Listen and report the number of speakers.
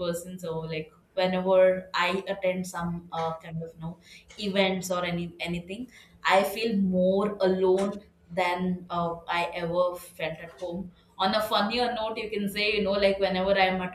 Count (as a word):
one